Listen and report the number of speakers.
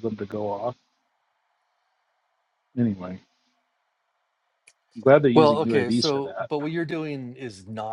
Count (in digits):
2